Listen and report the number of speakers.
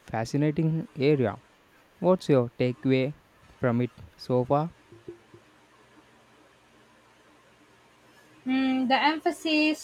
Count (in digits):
2